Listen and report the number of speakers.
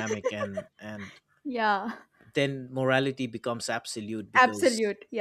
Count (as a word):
two